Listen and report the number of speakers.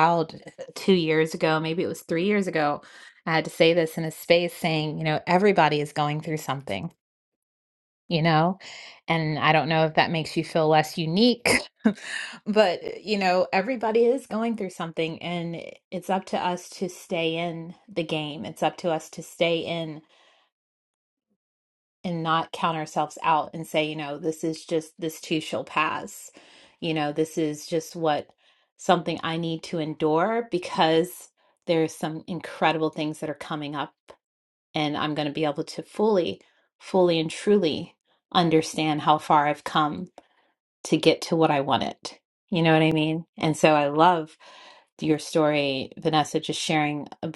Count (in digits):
1